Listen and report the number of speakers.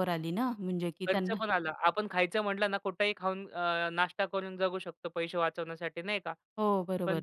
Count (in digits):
2